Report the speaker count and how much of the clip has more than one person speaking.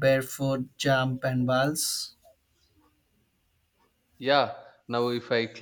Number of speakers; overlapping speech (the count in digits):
2, no overlap